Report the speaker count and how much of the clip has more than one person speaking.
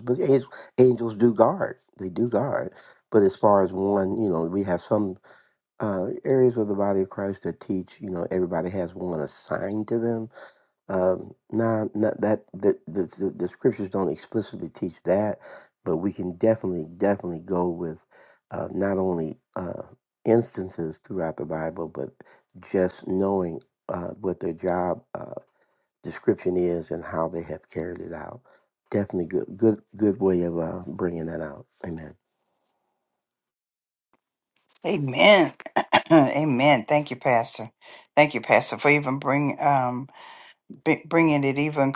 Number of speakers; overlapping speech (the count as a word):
two, no overlap